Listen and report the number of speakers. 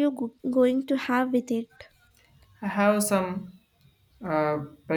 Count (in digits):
2